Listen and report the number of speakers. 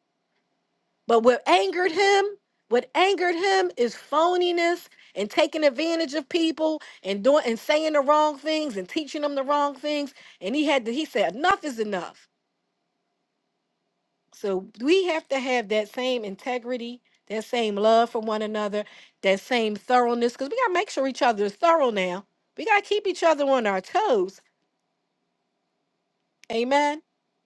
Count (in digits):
1